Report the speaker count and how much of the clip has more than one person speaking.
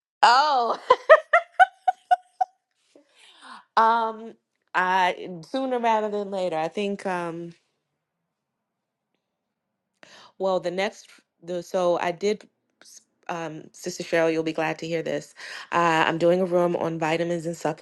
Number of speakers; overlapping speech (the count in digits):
1, no overlap